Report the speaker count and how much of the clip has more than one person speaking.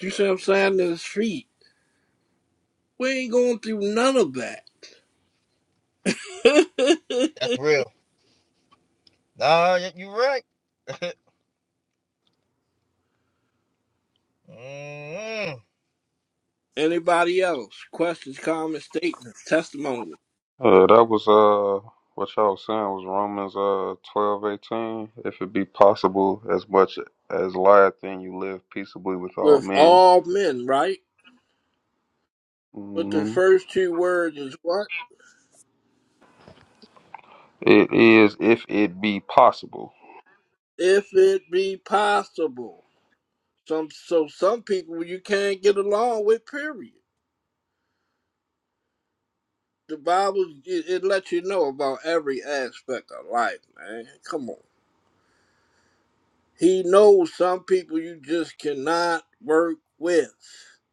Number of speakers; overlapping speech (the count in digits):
3, about 2%